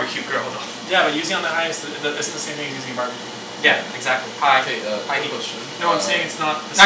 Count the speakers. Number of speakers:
three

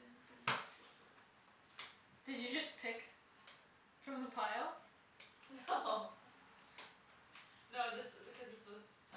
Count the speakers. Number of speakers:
two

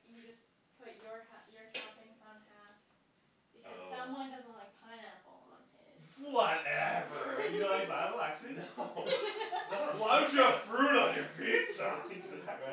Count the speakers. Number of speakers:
three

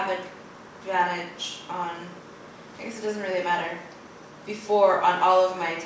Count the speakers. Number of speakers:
one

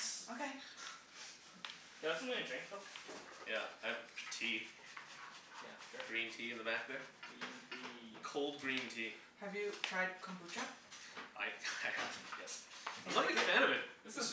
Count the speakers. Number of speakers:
three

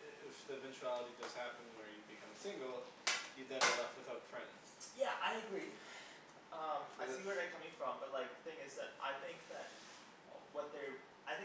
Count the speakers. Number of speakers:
two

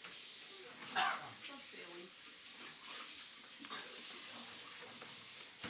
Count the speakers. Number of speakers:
one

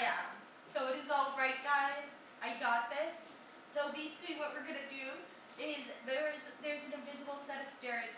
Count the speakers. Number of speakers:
one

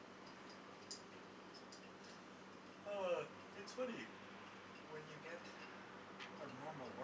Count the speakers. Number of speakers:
one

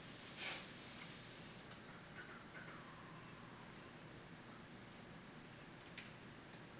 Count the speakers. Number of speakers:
zero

